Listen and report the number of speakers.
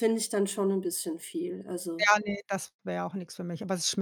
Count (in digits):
2